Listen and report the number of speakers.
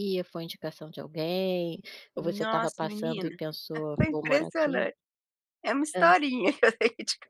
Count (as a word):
two